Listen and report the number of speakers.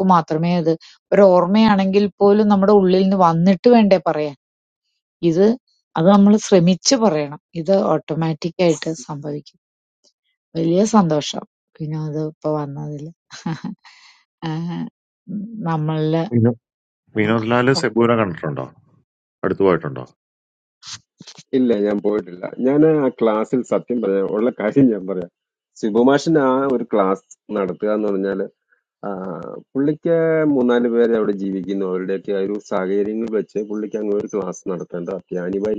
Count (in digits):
3